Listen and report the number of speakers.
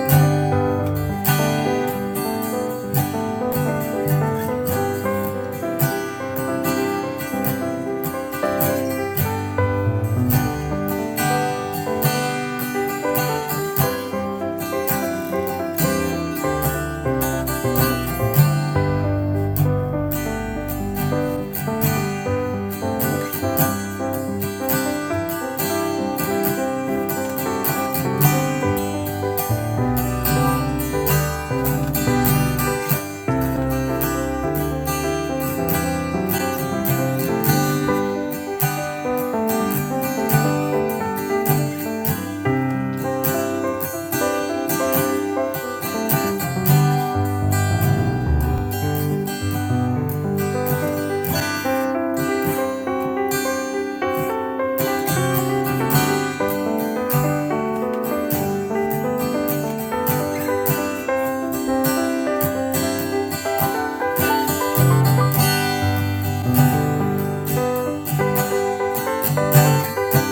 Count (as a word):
zero